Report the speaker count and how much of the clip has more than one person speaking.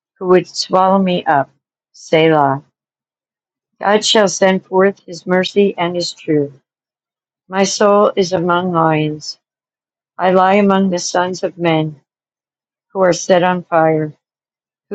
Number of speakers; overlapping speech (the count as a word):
one, no overlap